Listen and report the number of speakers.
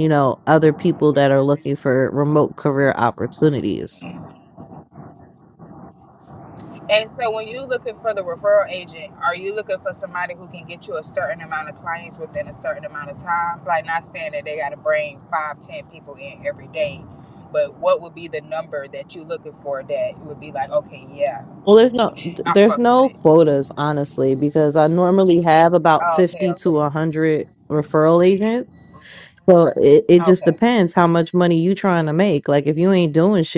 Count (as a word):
two